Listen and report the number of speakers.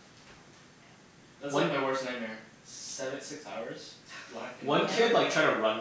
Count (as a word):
two